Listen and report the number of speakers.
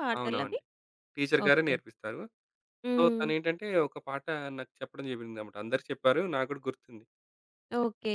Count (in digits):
2